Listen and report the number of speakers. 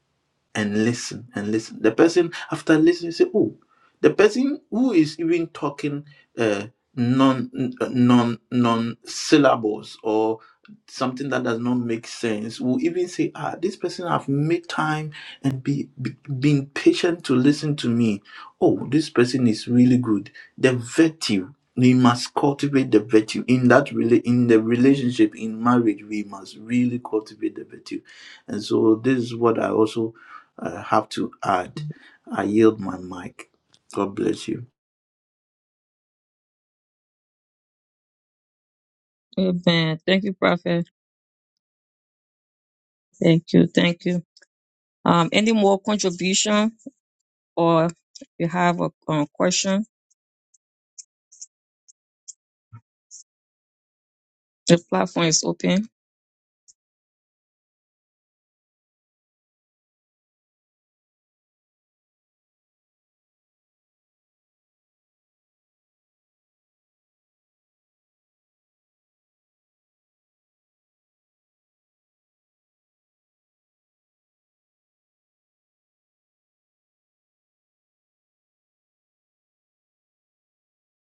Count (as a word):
two